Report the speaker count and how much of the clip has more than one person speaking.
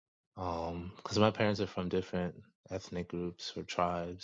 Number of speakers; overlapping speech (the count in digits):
1, no overlap